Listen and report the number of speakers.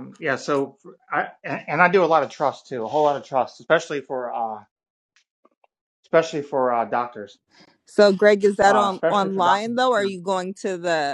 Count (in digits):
2